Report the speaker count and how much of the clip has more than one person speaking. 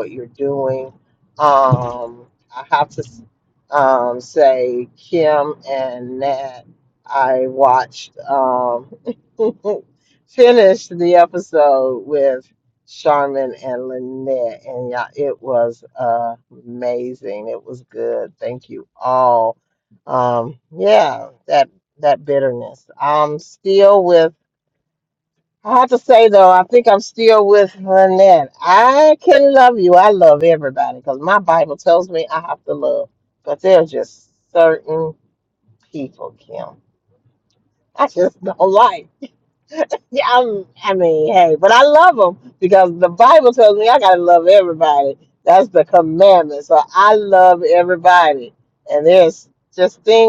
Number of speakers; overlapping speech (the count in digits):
1, no overlap